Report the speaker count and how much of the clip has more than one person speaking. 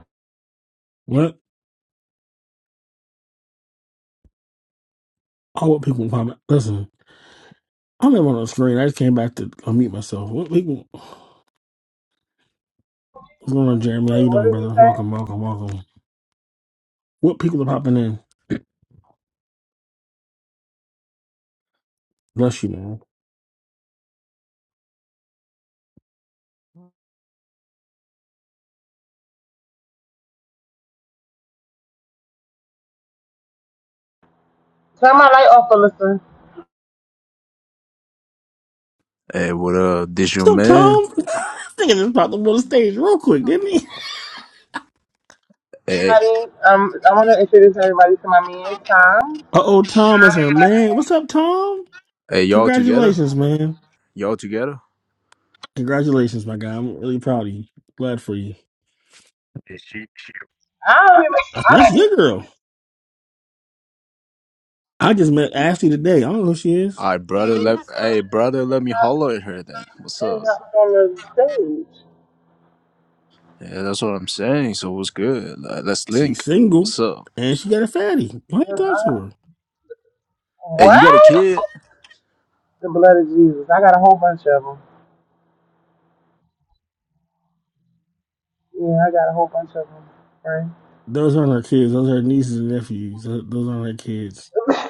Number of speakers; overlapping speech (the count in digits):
3, about 4%